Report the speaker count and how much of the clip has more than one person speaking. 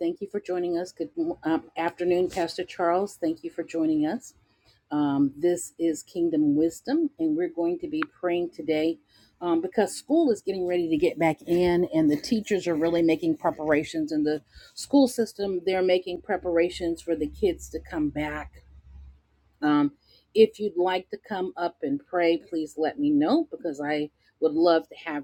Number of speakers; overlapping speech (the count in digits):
1, no overlap